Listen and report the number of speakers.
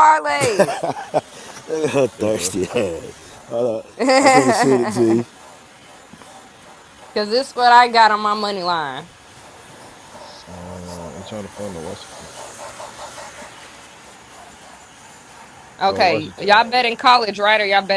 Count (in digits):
3